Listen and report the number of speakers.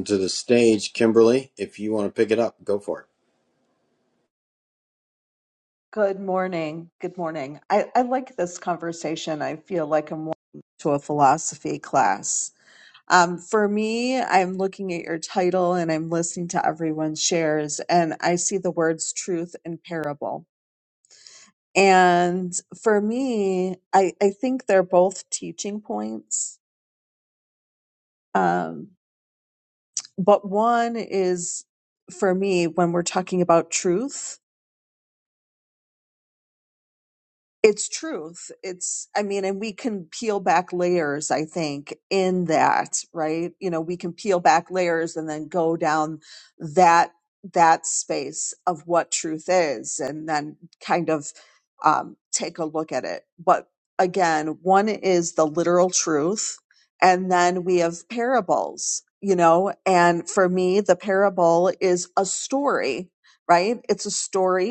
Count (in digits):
2